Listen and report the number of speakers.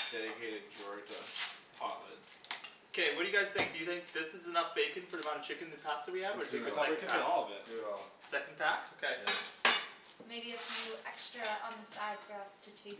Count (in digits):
4